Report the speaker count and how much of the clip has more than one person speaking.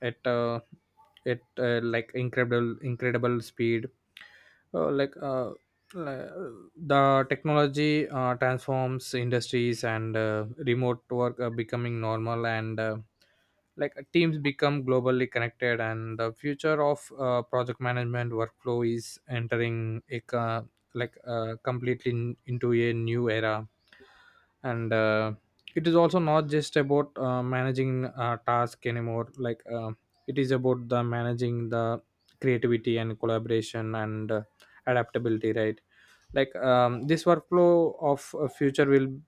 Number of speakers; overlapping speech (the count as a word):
one, no overlap